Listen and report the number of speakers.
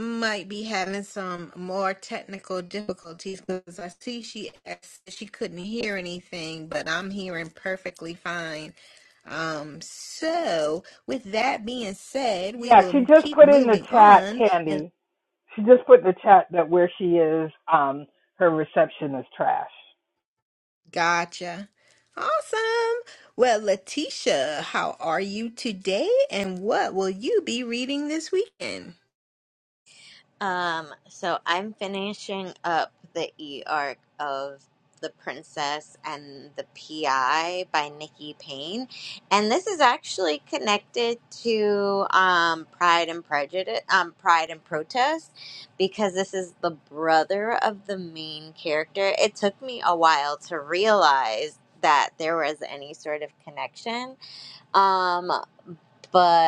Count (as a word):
three